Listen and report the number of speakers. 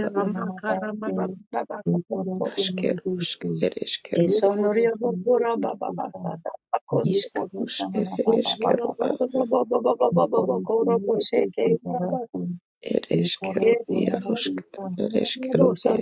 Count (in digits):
3